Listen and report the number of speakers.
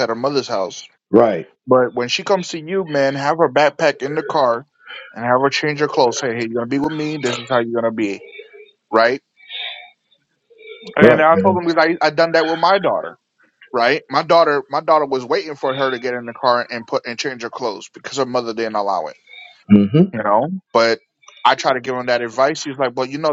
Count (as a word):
two